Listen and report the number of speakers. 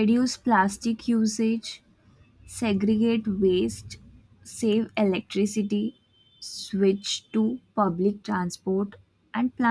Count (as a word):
one